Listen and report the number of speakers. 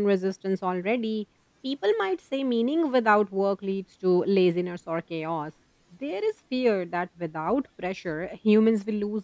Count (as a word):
one